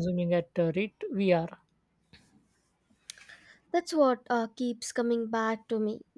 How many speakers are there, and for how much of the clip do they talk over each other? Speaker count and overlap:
2, no overlap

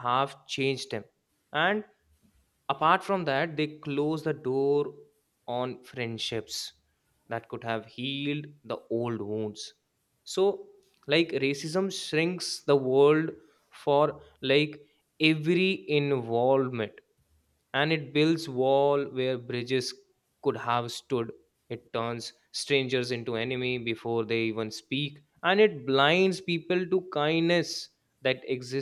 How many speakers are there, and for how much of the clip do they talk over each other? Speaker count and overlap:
1, no overlap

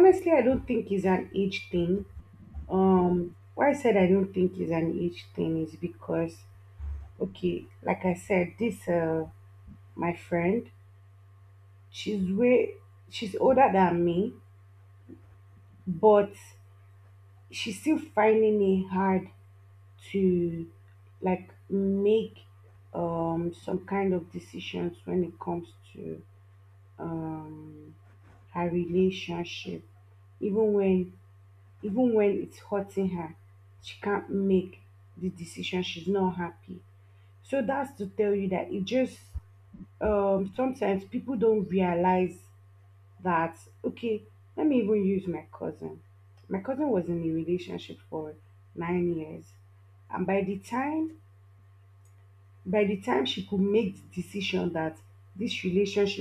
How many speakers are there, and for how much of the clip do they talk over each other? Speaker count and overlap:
1, no overlap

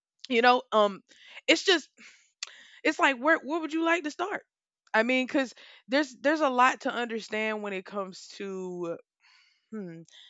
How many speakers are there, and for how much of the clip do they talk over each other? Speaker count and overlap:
1, no overlap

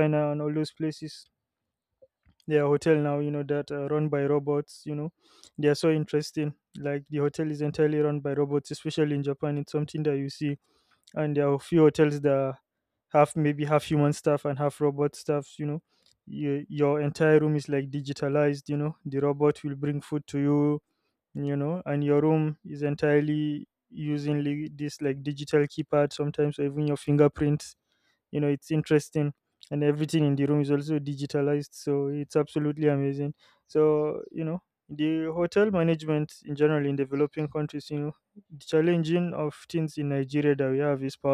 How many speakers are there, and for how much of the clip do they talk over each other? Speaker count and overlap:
1, no overlap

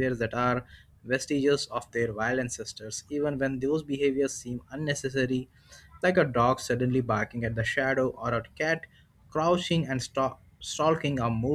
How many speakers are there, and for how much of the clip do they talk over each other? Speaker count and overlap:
1, no overlap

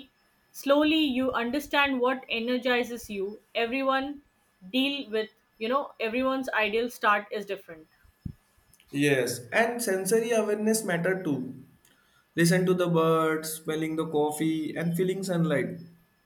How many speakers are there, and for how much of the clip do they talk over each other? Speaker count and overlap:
2, no overlap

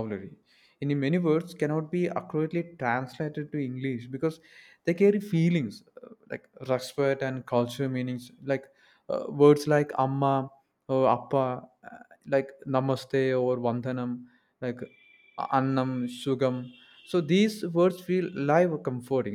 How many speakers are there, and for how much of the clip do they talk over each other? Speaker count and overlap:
1, no overlap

